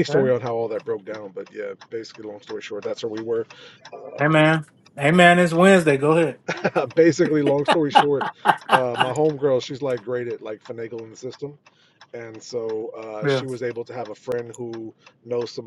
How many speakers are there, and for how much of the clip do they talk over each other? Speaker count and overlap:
two, about 3%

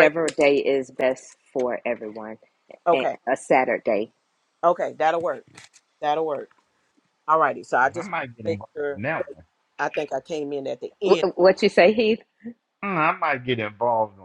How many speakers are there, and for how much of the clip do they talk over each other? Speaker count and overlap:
three, about 6%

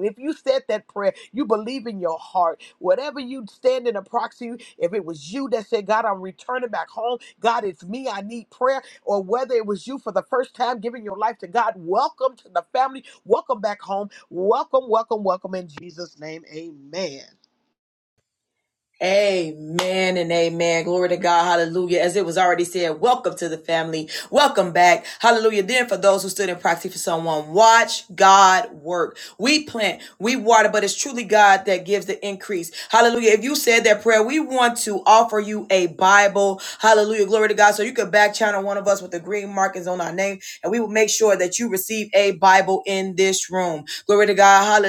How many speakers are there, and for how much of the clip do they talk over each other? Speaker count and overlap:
two, no overlap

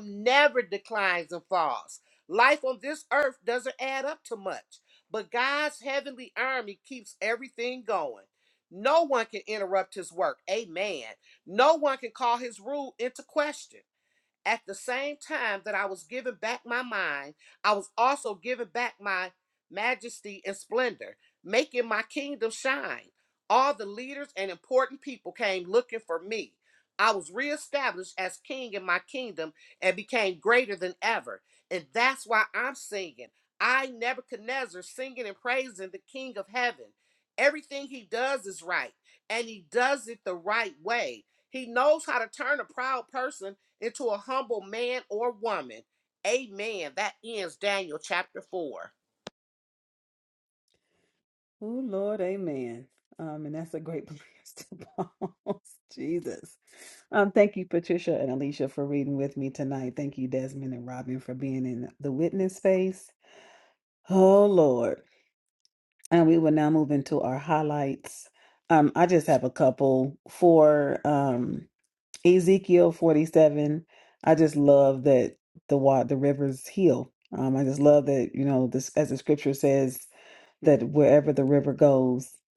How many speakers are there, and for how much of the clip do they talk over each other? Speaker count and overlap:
two, no overlap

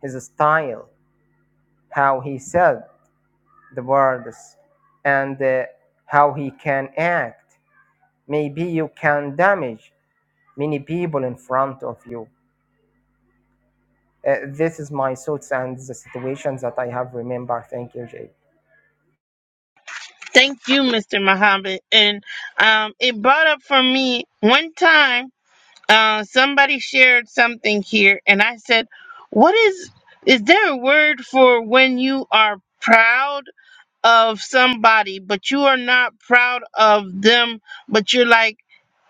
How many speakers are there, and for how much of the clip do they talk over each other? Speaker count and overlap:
two, no overlap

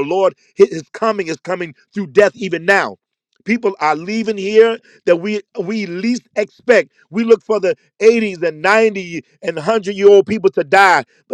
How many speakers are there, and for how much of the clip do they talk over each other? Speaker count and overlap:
one, no overlap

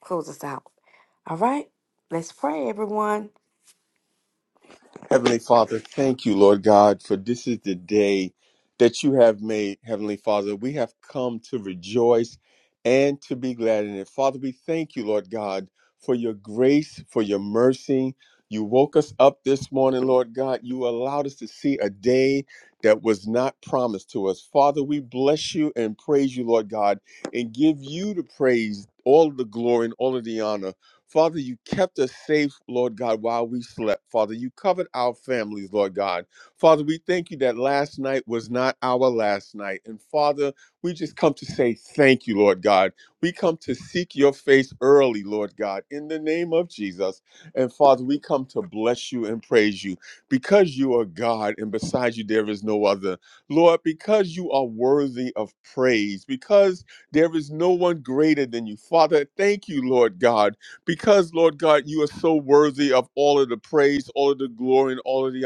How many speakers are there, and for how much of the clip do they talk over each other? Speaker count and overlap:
two, no overlap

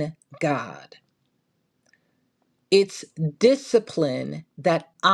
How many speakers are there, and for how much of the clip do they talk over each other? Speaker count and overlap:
one, no overlap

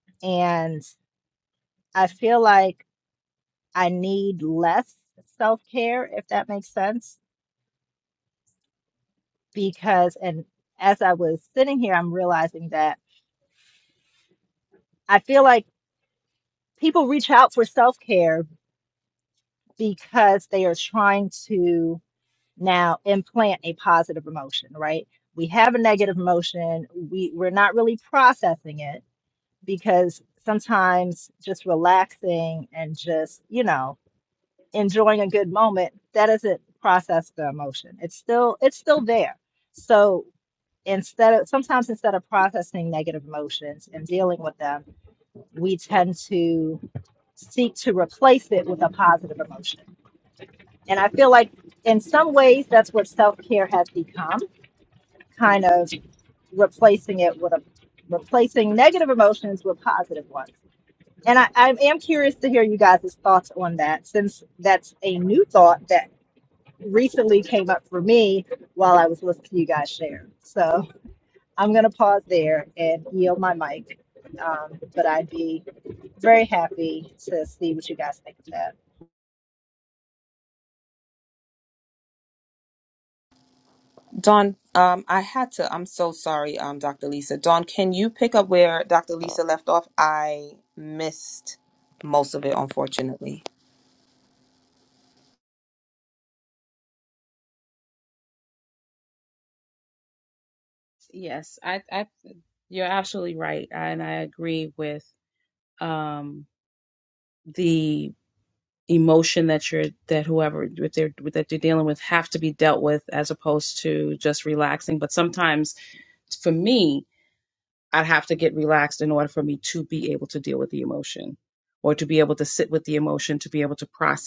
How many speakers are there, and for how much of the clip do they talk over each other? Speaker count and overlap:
three, no overlap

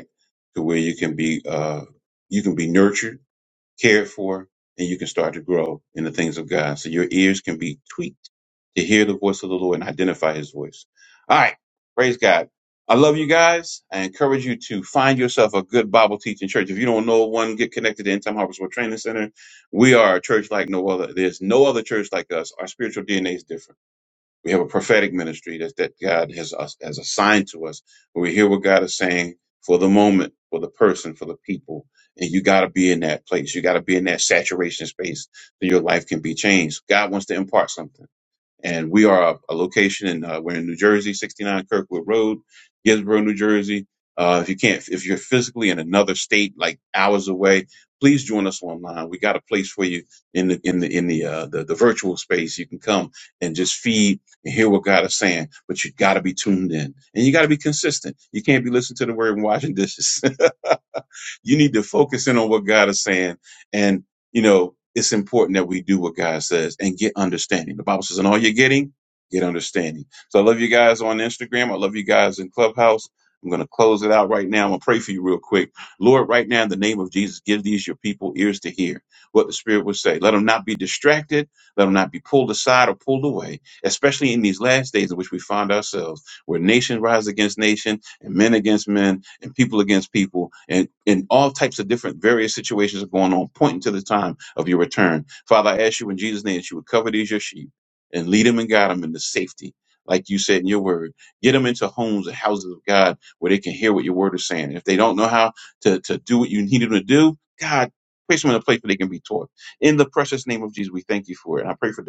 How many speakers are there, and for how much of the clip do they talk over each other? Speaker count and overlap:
one, no overlap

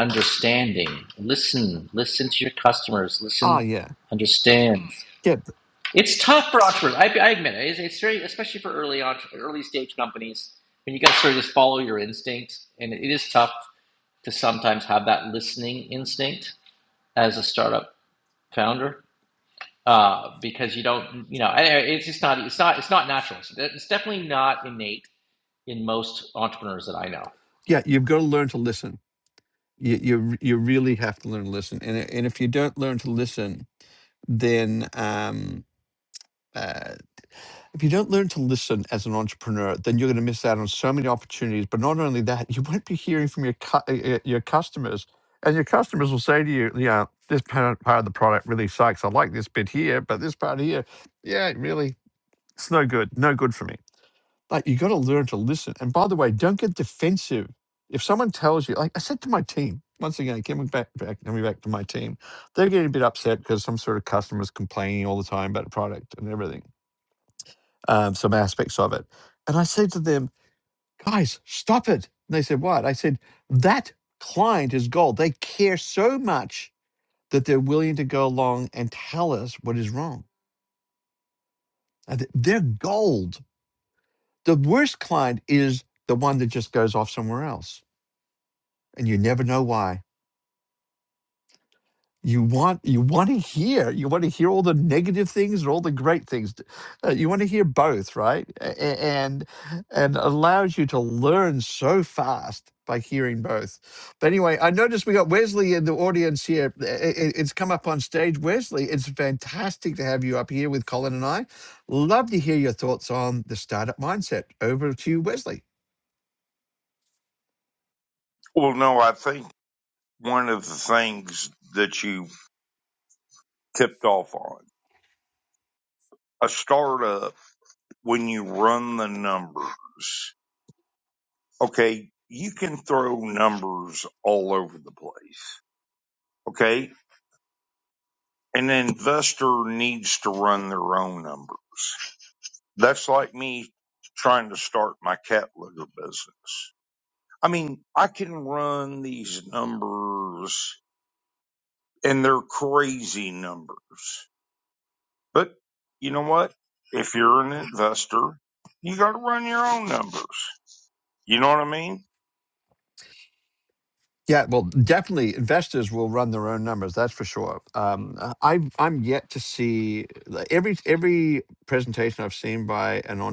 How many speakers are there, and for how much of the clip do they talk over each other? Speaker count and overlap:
three, under 1%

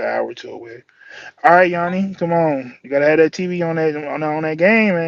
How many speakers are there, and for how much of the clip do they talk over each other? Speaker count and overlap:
one, no overlap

